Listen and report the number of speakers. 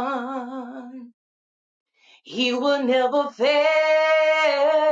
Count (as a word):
one